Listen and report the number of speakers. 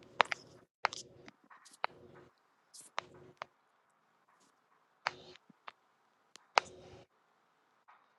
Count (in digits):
0